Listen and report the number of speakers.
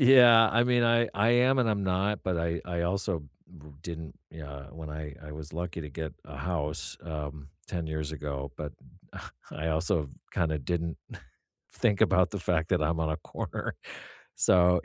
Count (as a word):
one